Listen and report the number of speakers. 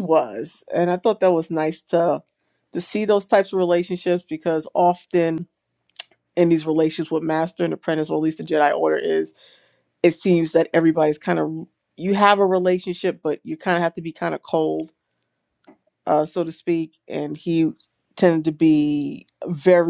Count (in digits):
1